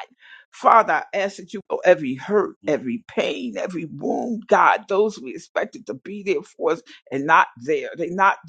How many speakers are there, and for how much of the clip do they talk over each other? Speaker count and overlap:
one, no overlap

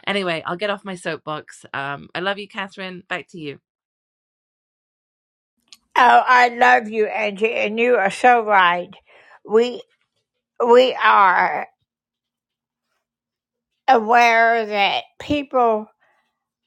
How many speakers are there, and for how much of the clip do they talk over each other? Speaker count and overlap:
two, no overlap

